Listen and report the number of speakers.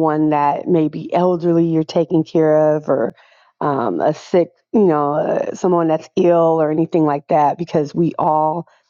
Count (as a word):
one